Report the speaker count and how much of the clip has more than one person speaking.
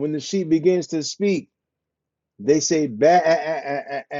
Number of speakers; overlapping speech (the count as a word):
one, no overlap